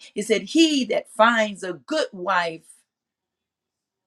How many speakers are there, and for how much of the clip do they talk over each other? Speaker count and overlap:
1, no overlap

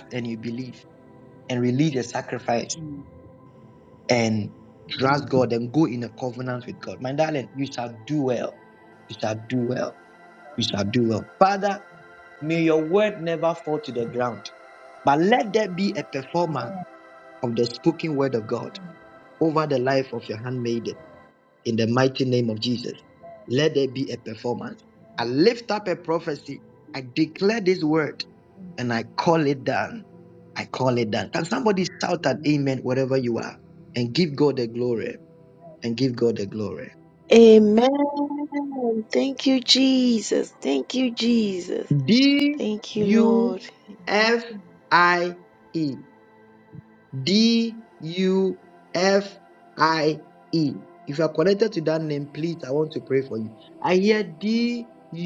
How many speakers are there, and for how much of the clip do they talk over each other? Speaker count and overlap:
3, about 3%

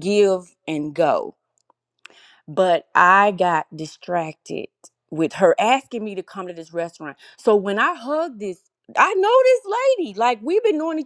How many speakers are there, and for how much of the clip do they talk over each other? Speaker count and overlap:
1, no overlap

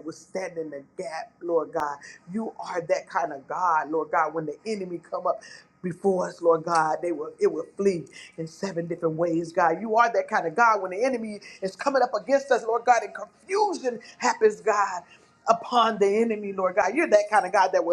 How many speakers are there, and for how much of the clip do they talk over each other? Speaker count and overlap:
1, no overlap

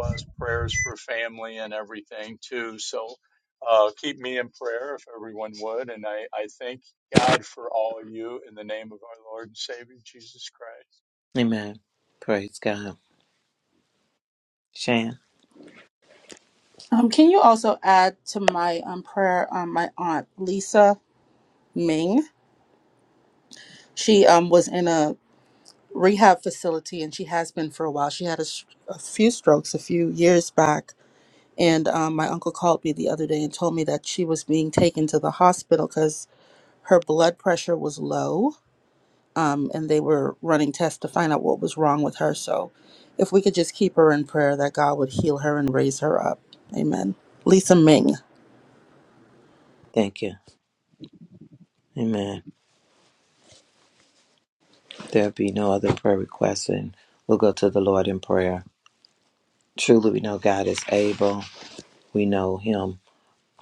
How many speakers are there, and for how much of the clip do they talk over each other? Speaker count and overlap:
3, no overlap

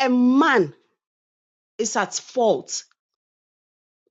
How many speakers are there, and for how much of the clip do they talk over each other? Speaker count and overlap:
1, no overlap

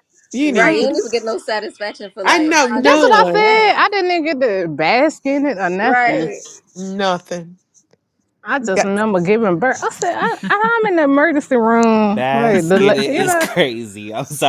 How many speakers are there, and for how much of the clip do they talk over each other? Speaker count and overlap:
4, about 28%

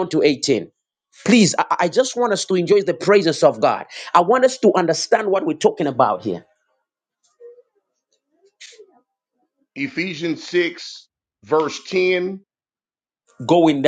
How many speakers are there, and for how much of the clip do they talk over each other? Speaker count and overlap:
2, no overlap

